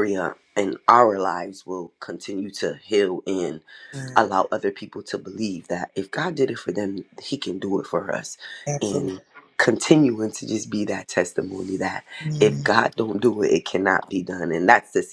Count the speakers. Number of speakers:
2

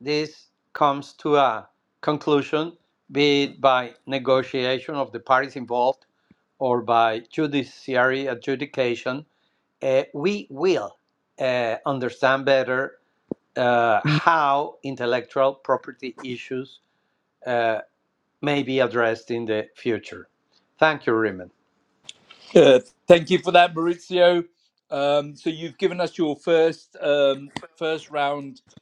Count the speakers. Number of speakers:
2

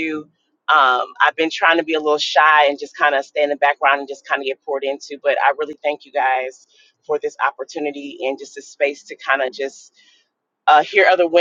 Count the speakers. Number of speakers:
1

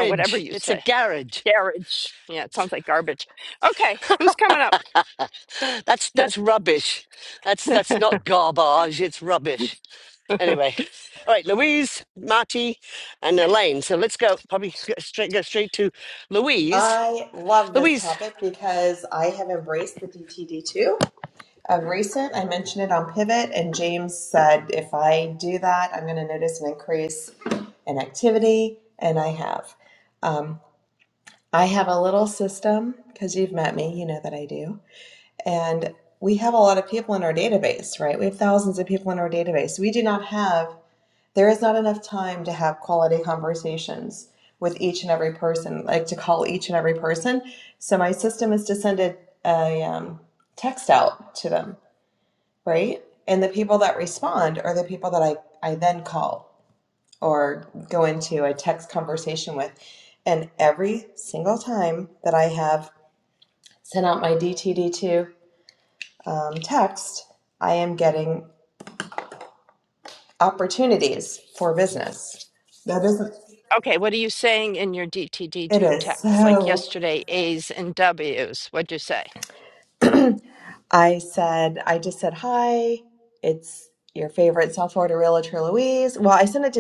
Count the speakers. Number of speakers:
3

